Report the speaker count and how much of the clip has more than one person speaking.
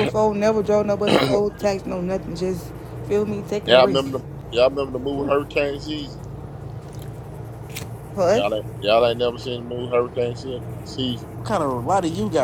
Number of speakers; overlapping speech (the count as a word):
three, about 5%